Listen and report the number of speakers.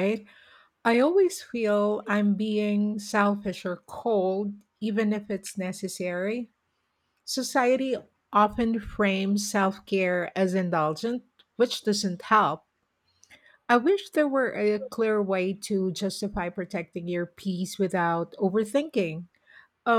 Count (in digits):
1